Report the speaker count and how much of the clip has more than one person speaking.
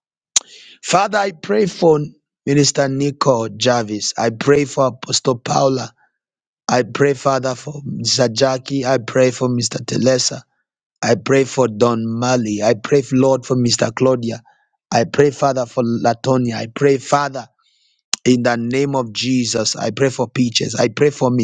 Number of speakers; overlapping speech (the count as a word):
one, no overlap